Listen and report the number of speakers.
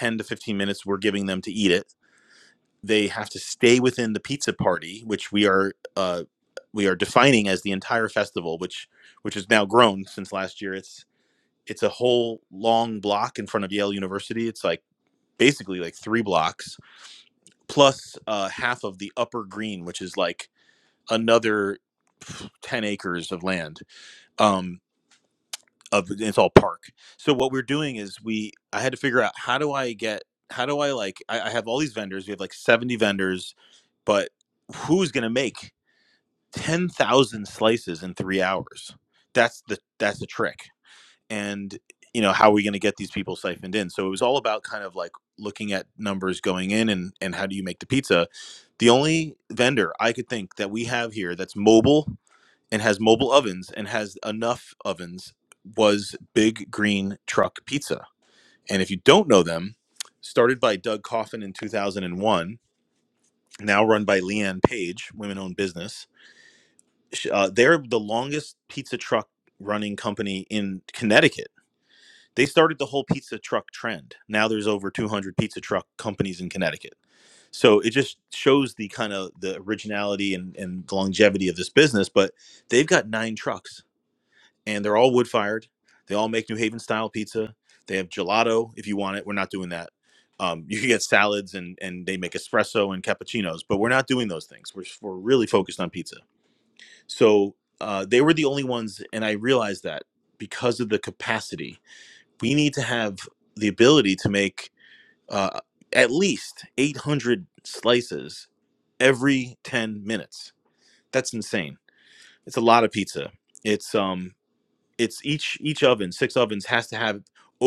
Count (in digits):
1